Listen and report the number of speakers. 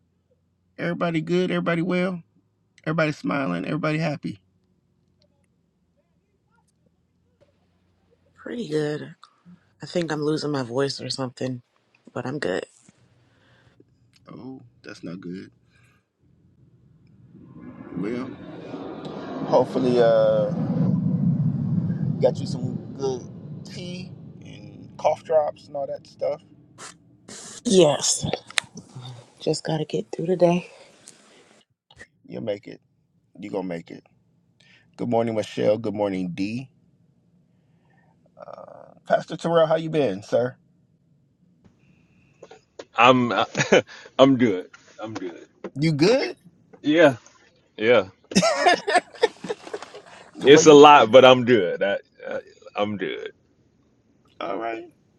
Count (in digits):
3